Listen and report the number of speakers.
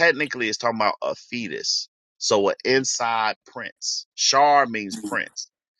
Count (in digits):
1